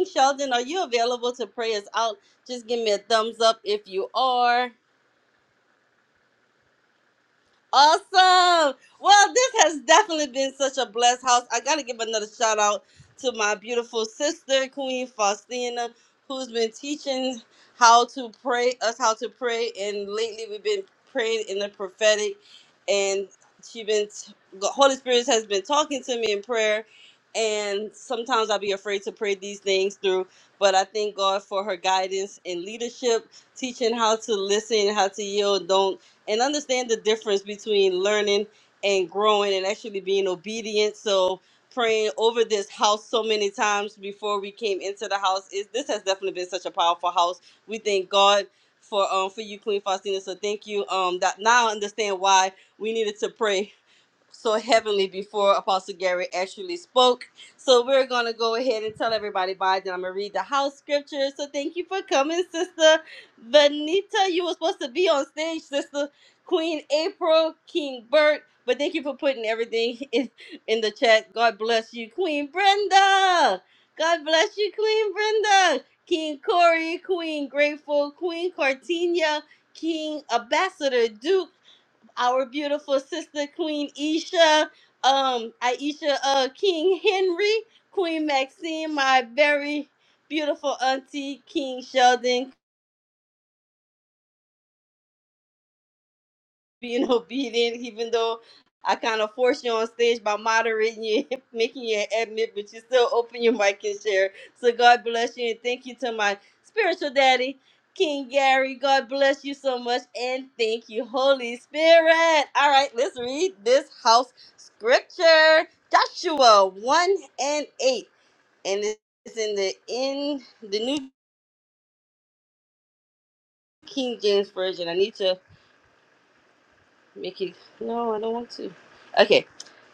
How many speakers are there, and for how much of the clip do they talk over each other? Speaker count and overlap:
1, no overlap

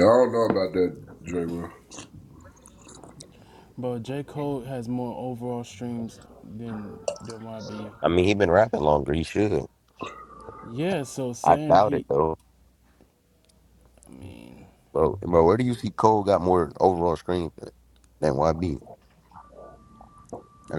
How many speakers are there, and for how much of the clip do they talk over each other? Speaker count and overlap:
3, about 3%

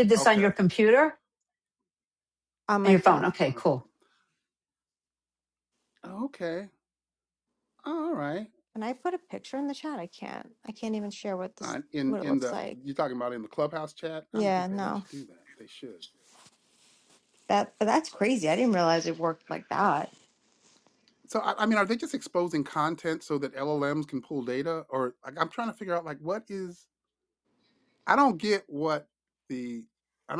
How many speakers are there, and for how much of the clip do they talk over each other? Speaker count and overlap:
3, about 8%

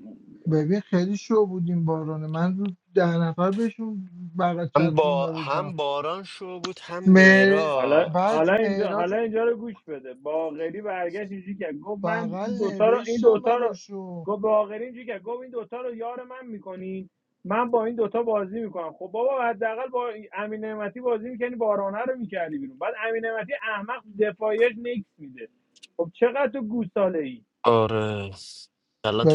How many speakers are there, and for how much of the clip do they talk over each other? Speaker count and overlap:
3, about 17%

